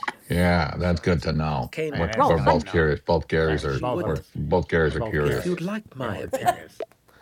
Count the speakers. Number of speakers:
2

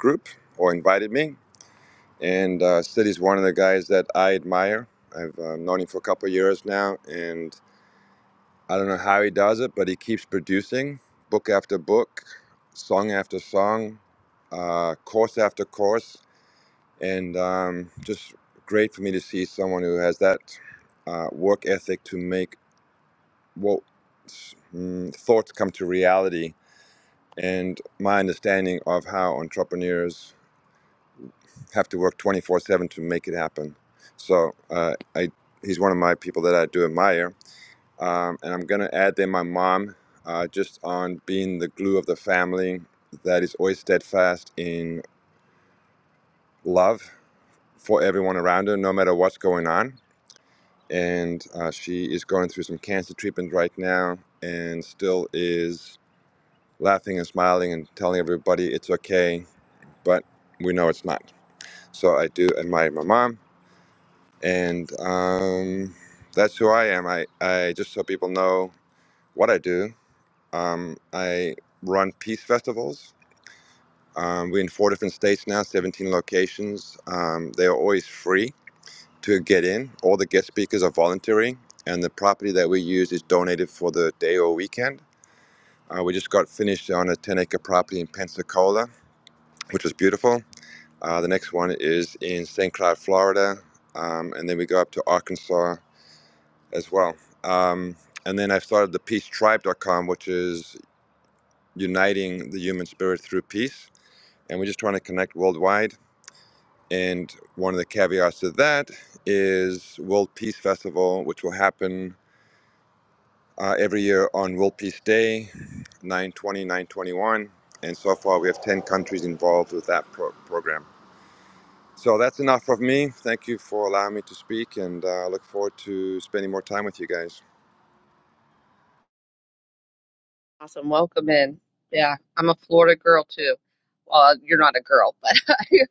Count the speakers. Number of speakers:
2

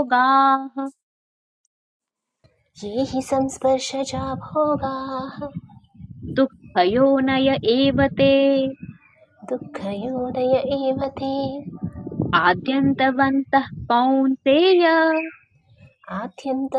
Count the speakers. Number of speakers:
2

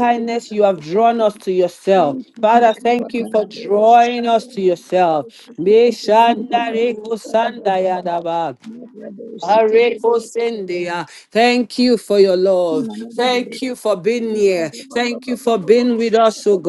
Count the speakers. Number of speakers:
2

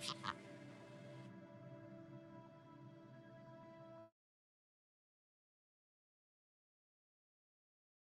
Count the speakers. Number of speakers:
0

